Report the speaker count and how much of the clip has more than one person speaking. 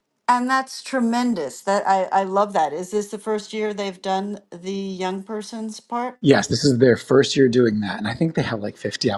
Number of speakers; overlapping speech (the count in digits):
2, no overlap